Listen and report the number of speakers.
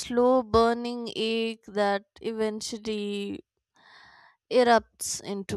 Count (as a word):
one